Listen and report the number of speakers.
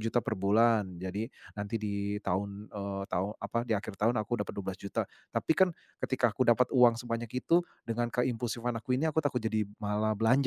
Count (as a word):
one